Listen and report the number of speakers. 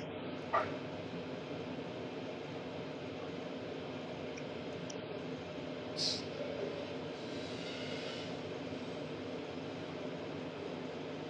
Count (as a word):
zero